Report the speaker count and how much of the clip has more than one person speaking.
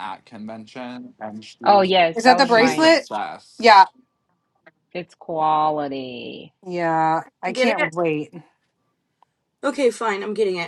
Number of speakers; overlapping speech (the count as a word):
four, about 14%